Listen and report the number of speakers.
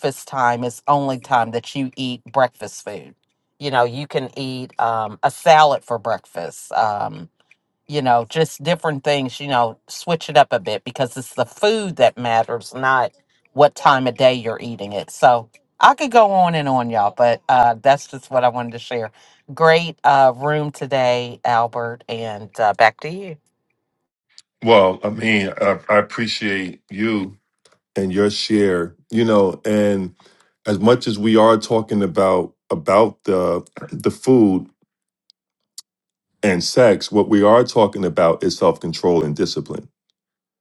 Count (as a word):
two